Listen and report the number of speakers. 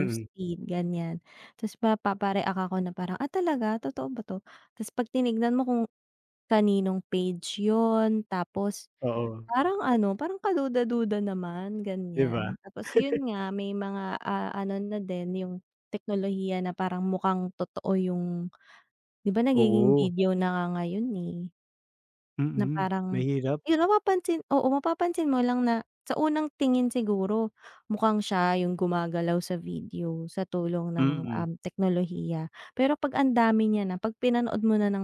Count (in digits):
2